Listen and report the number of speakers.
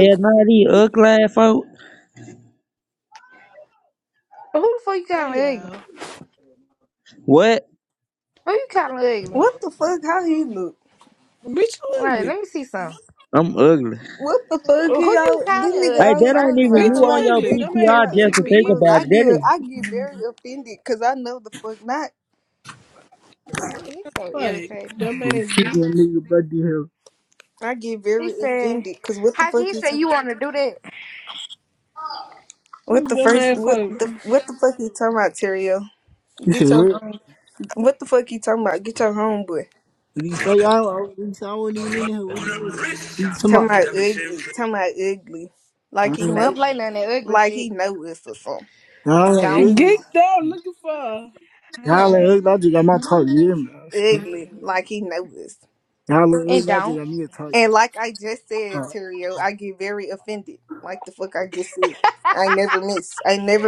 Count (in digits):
5